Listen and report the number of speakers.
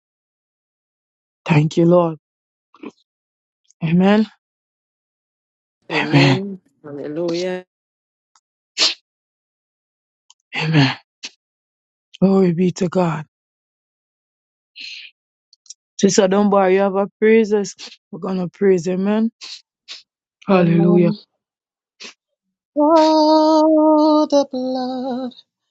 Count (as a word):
three